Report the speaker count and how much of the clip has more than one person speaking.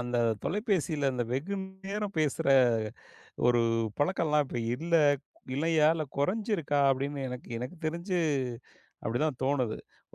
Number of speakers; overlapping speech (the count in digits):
1, no overlap